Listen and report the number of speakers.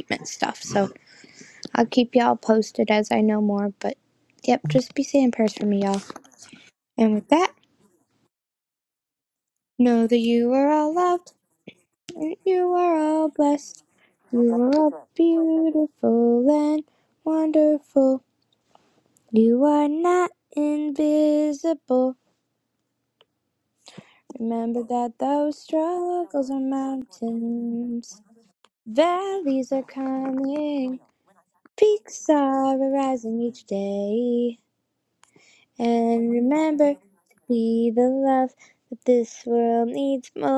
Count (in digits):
1